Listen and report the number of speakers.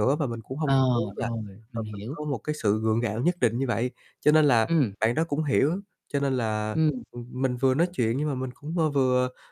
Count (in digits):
2